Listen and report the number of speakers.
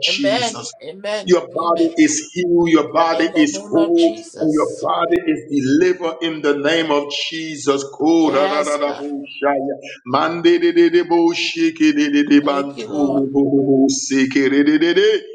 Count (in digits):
2